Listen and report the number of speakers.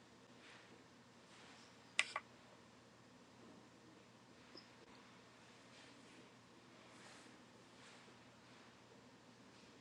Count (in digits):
0